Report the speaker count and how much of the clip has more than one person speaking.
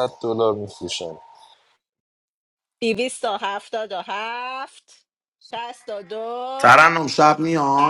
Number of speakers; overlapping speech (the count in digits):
3, about 4%